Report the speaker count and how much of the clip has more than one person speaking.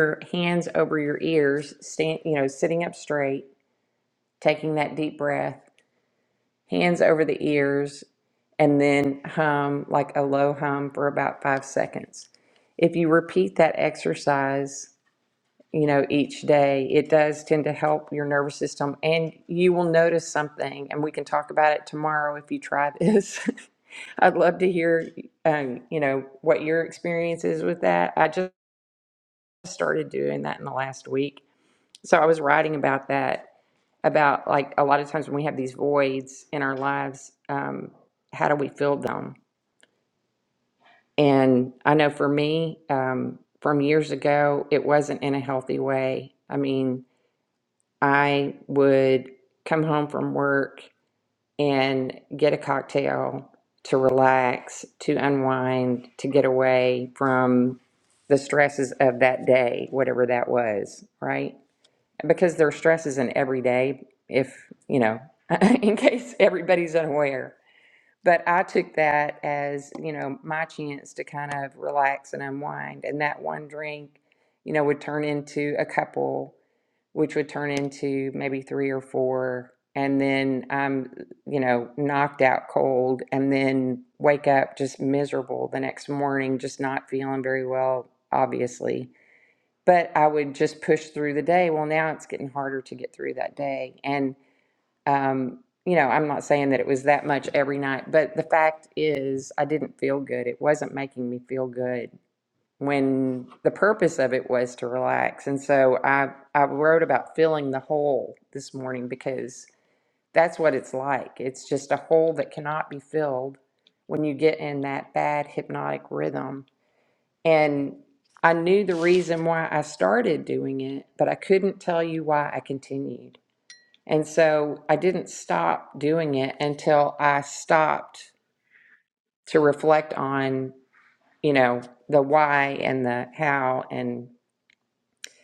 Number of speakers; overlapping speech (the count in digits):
1, no overlap